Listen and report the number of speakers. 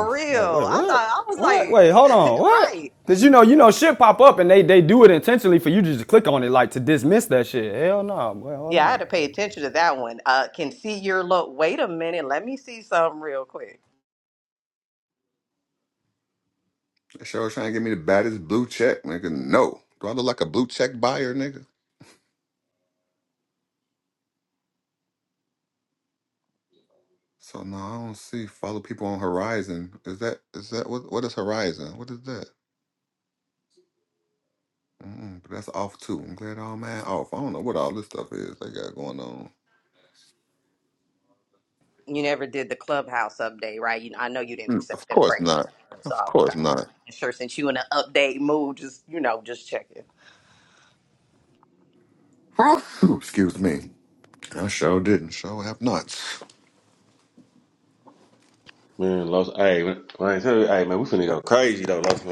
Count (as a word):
four